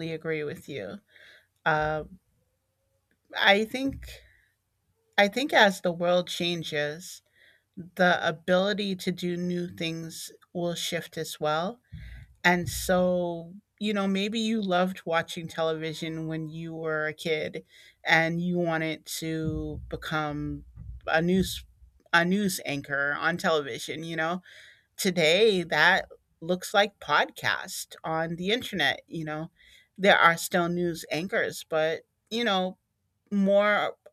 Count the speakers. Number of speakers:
1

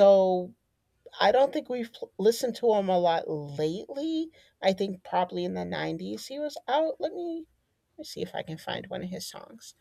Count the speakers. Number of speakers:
1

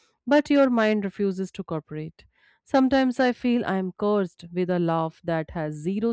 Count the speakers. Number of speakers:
1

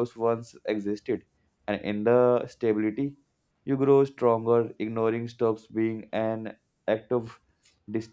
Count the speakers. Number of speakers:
1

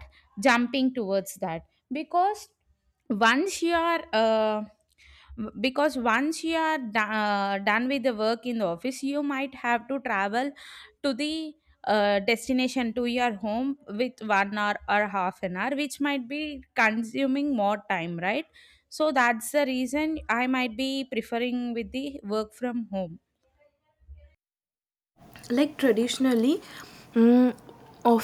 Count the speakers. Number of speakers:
2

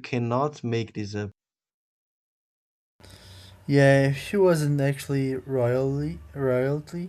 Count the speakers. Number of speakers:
2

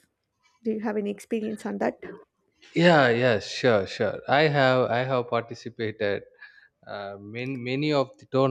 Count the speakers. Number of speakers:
2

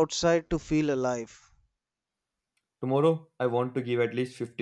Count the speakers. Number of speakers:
2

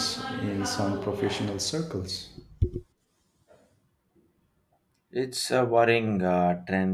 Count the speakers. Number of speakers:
2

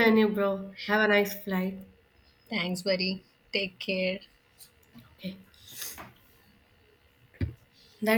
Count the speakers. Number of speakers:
2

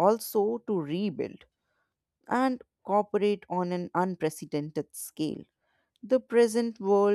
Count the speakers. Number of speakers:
1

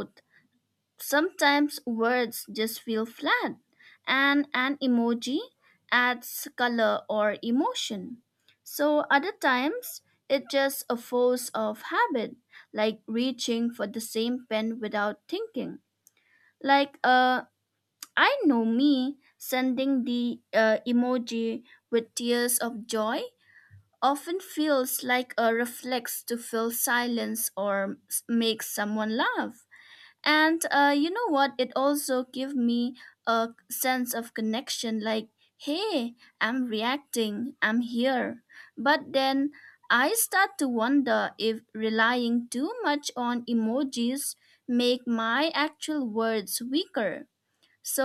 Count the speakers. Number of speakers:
1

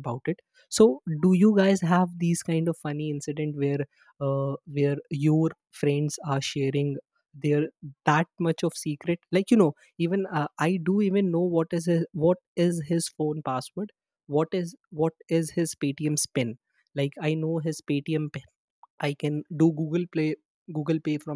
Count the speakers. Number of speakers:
1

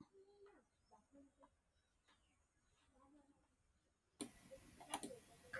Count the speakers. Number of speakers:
0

